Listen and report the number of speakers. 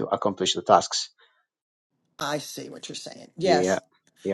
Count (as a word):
two